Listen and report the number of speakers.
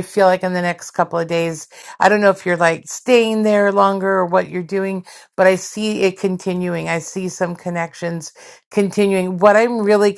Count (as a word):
one